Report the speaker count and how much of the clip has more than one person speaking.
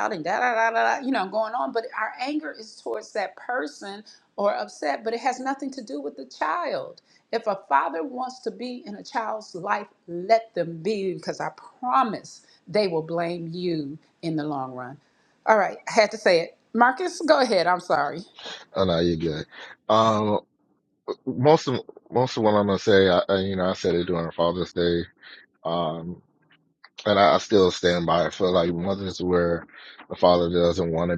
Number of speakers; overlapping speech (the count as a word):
two, no overlap